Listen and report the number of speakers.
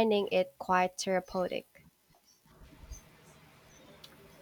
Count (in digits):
1